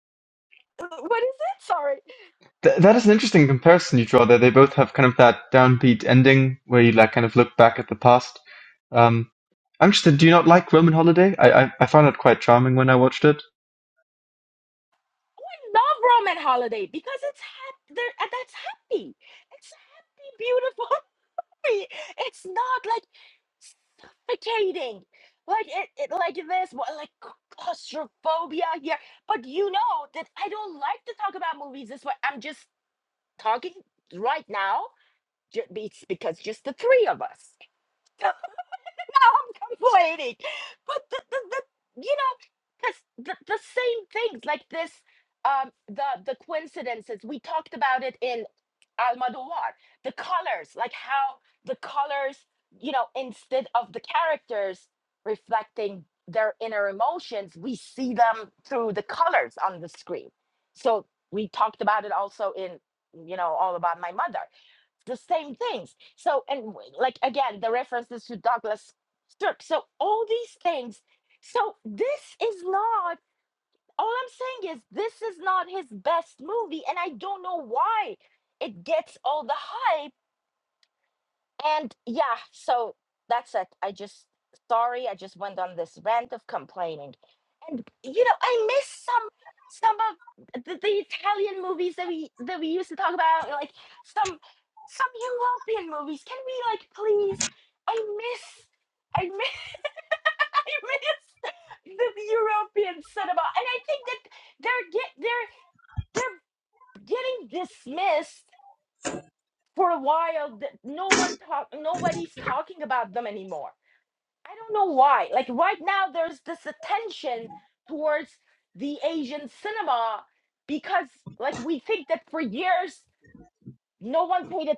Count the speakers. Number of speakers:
two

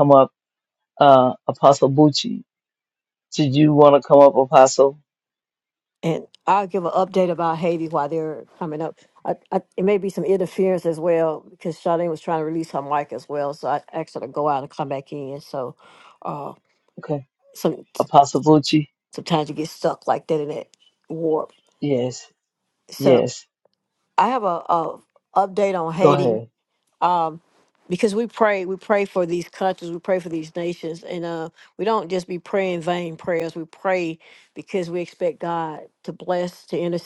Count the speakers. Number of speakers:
two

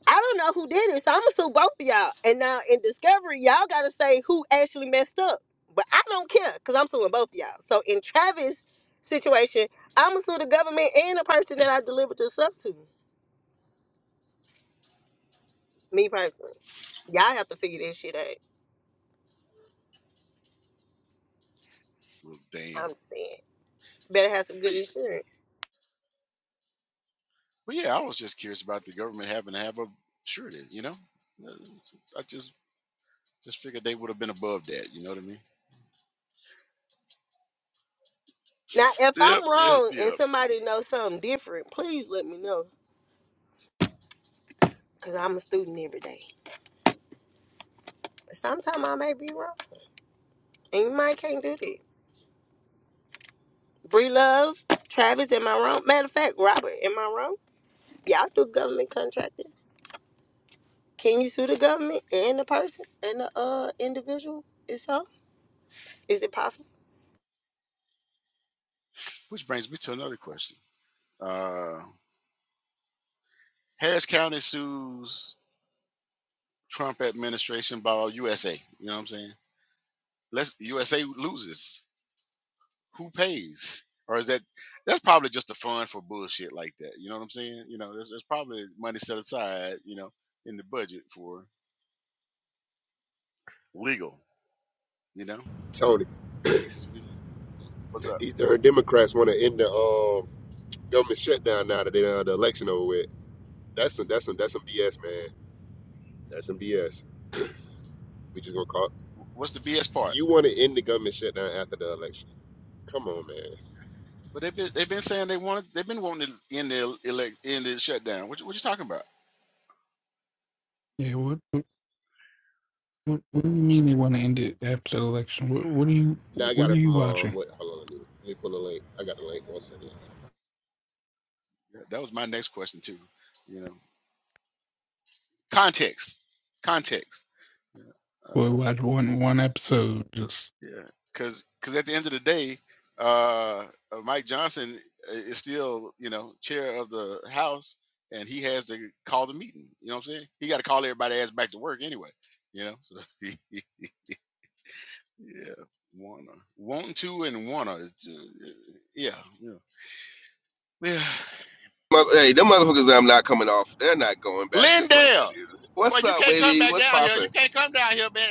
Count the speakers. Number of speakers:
five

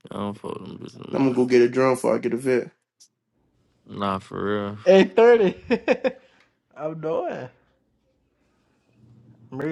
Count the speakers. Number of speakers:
three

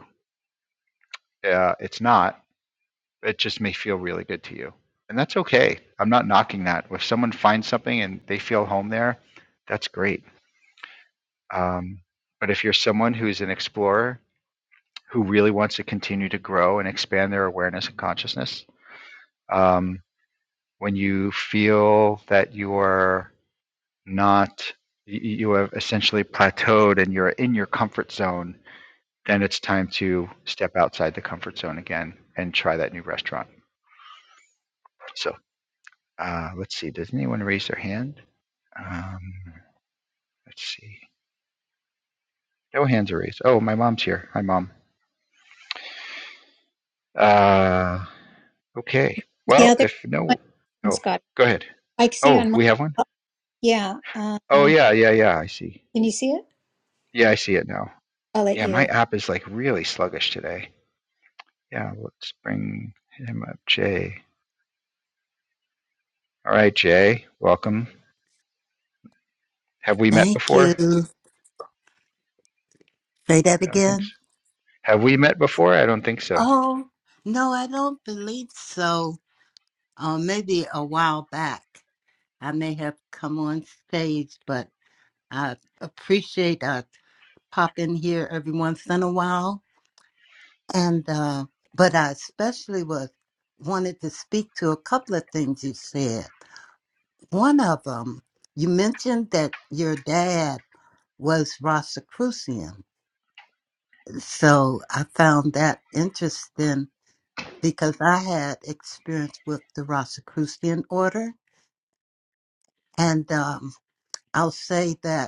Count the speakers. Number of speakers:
three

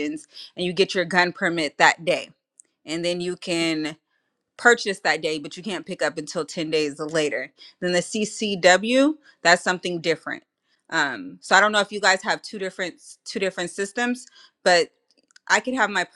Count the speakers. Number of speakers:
one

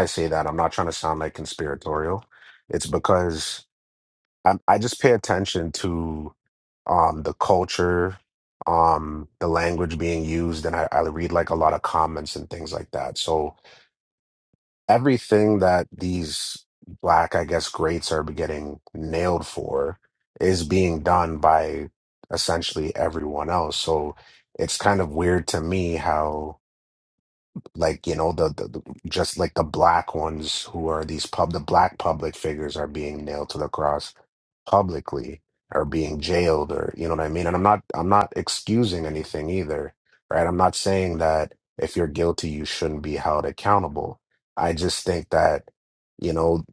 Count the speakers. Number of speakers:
one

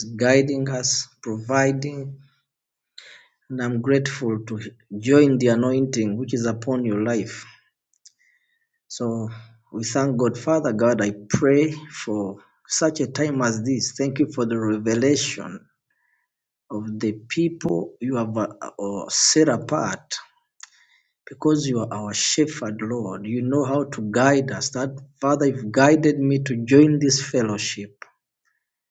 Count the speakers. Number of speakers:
one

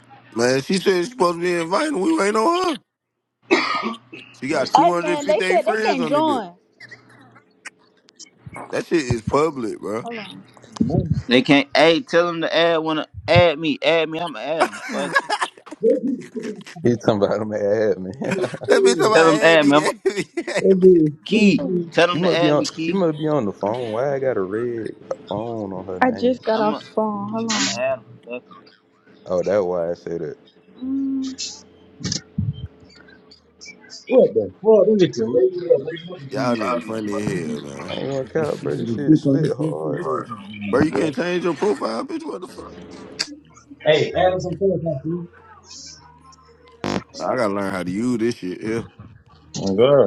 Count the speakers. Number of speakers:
five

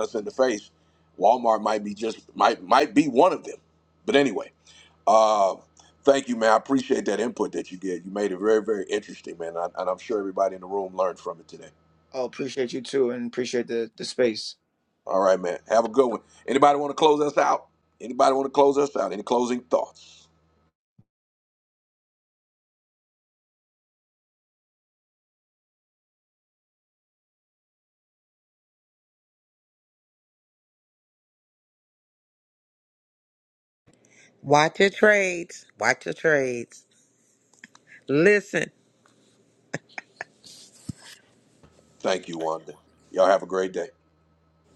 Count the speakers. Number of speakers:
three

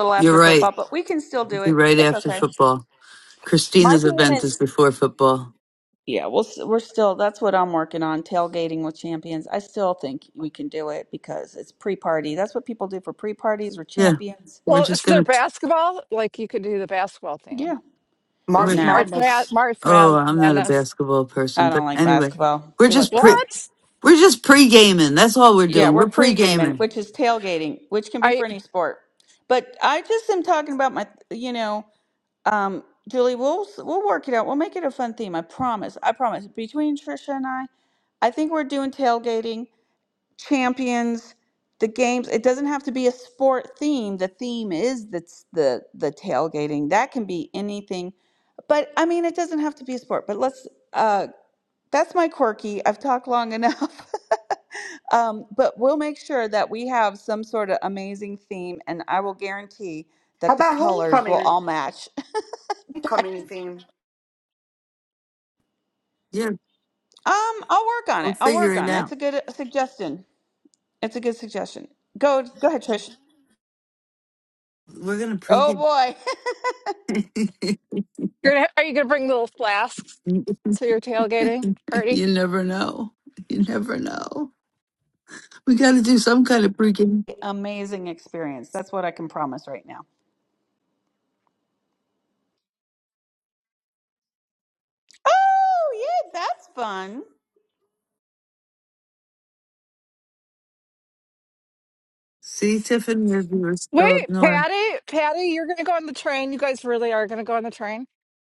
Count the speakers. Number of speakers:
four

